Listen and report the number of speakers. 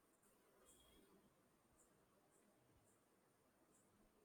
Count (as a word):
zero